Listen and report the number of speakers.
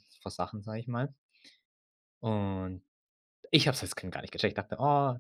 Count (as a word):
one